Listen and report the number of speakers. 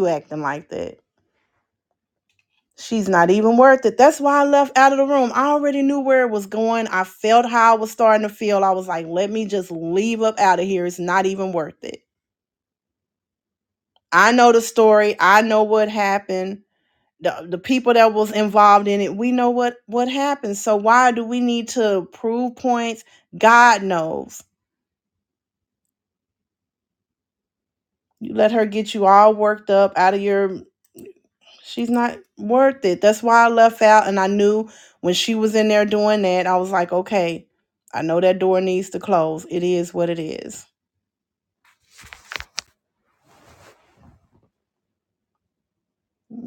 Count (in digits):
1